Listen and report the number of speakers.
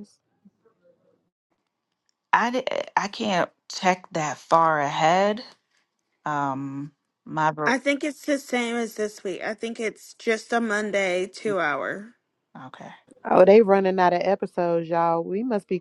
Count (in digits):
3